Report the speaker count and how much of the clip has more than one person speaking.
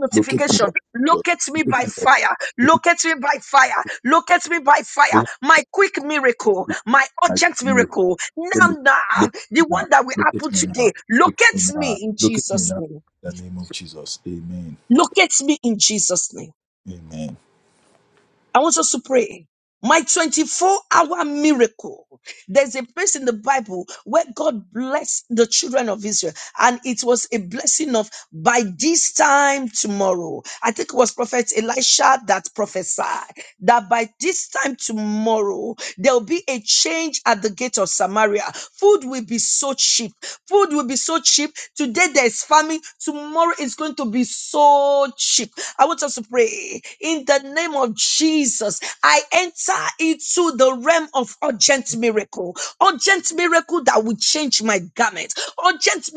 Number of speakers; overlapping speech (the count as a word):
two, about 10%